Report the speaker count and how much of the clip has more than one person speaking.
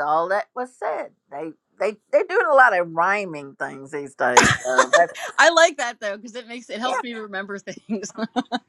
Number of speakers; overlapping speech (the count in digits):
2, about 2%